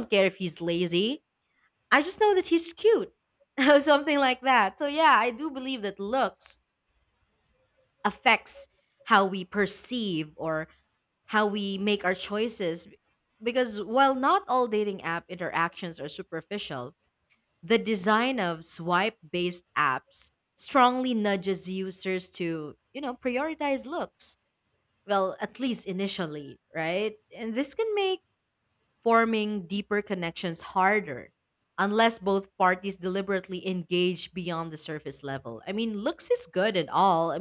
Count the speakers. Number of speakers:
one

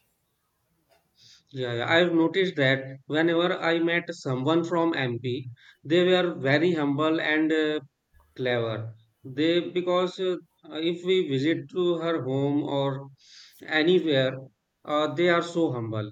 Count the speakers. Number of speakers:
one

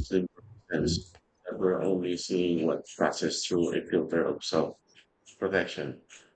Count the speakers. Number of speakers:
one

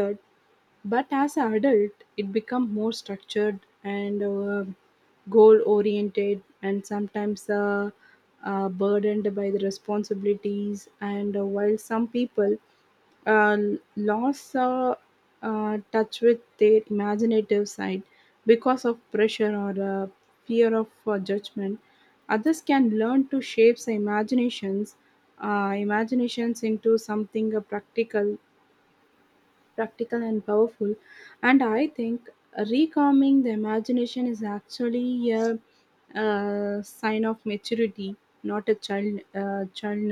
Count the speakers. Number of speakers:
one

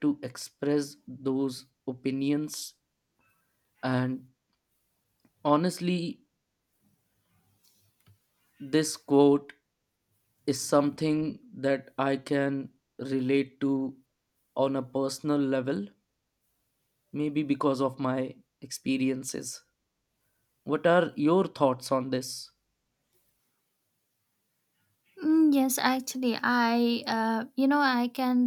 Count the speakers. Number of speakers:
two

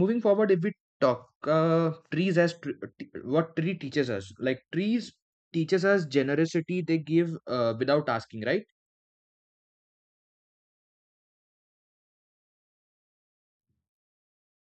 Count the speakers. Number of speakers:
one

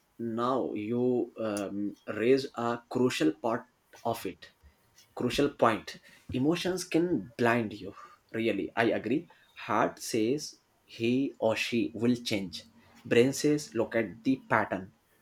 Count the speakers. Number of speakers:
one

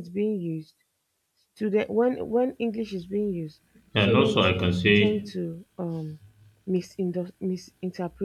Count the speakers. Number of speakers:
two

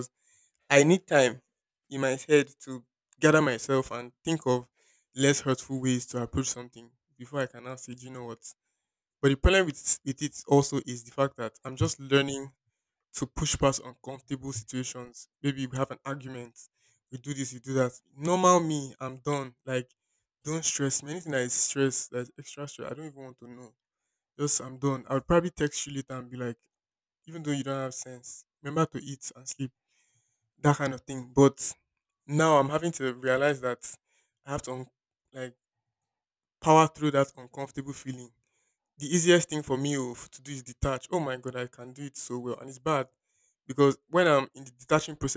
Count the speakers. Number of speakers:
one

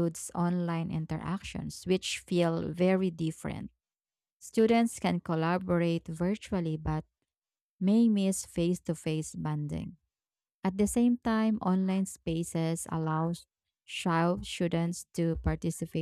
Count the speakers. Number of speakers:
one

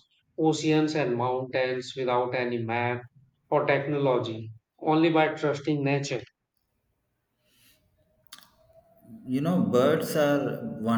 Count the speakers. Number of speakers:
two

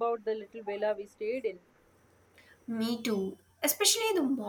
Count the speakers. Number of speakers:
two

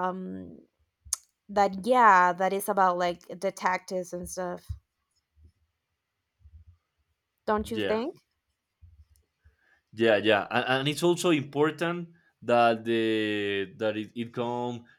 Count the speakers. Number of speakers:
two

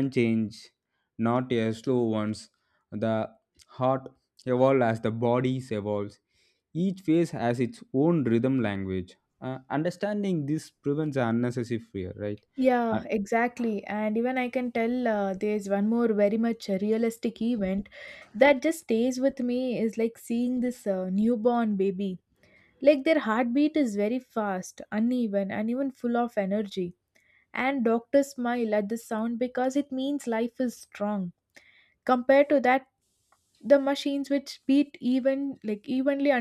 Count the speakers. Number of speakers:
two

